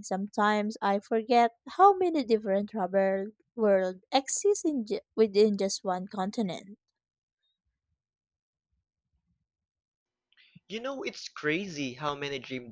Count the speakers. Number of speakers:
two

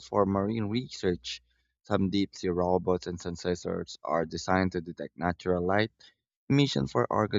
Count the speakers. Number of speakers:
one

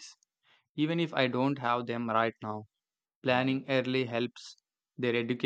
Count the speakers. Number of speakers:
one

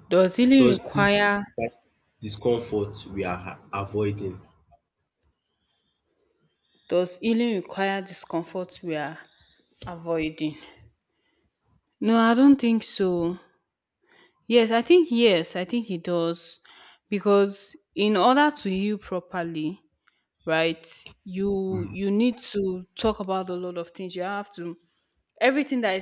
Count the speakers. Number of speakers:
two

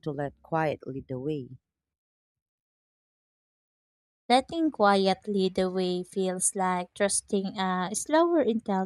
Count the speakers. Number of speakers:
two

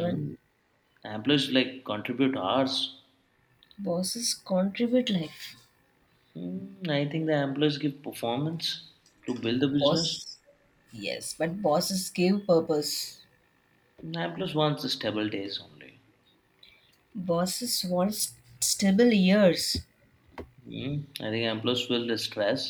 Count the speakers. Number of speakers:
two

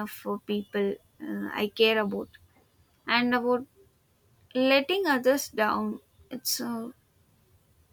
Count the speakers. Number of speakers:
one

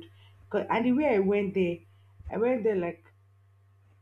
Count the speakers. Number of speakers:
one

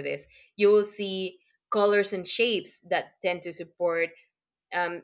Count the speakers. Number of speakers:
one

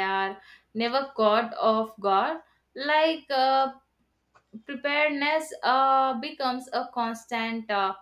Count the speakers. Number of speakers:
one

